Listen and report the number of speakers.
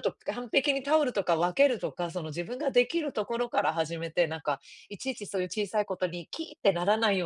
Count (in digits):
1